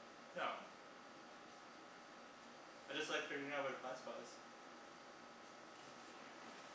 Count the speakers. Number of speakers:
1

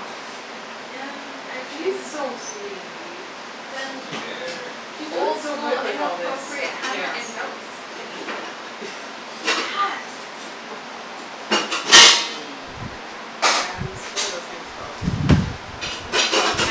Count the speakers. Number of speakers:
3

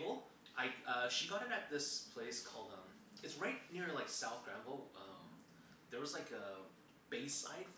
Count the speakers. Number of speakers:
1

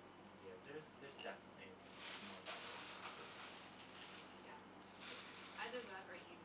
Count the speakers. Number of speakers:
2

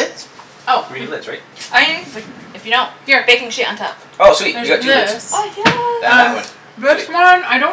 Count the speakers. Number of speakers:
3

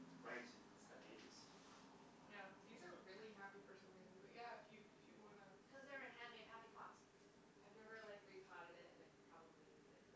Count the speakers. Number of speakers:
4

